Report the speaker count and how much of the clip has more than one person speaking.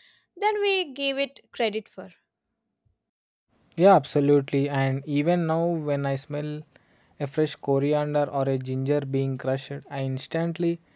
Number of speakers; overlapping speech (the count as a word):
two, no overlap